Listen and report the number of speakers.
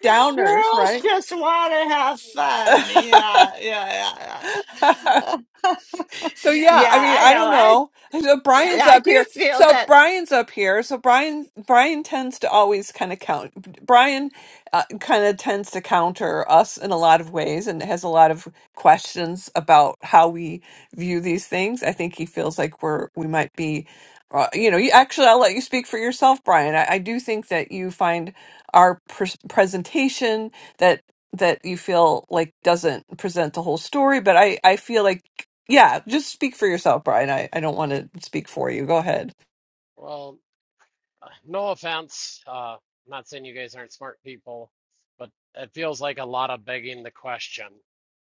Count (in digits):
3